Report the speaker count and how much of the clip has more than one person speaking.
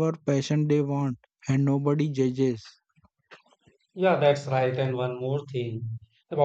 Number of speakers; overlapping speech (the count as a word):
two, no overlap